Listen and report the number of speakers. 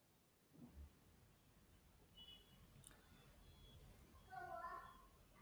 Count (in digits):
0